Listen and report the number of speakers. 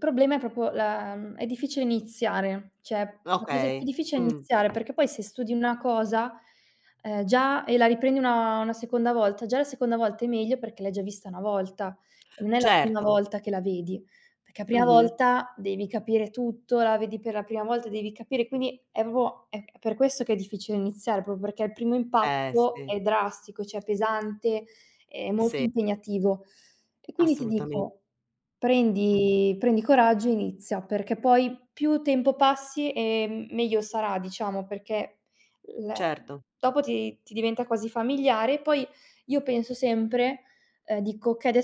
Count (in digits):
2